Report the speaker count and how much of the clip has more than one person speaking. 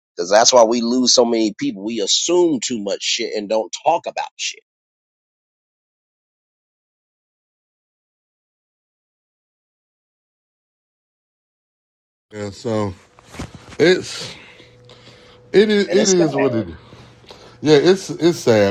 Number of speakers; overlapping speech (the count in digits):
2, about 2%